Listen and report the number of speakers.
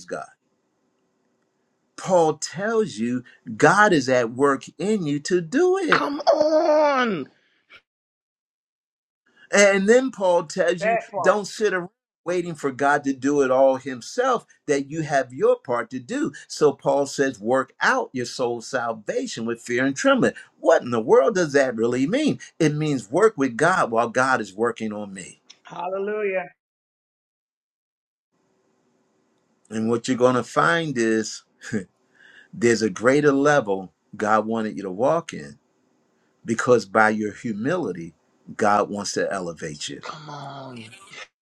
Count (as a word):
three